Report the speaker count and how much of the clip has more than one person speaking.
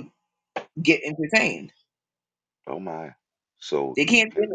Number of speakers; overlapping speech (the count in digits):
2, about 9%